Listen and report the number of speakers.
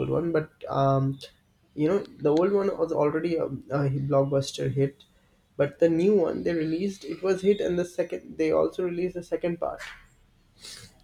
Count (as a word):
one